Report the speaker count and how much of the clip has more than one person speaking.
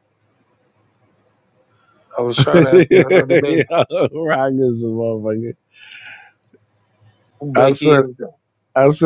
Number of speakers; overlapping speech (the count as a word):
two, about 17%